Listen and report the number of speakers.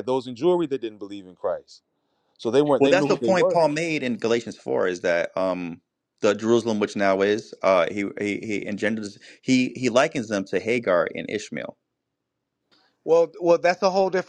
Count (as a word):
three